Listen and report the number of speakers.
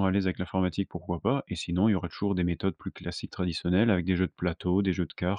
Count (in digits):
1